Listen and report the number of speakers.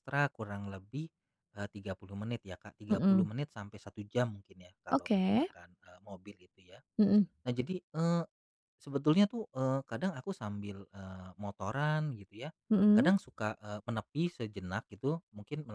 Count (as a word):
two